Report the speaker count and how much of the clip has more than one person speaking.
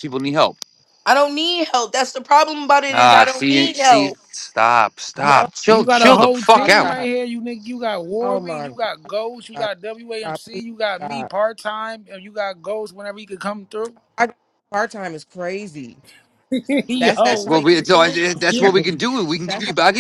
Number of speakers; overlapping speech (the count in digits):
4, about 27%